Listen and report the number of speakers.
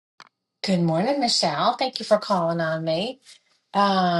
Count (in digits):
1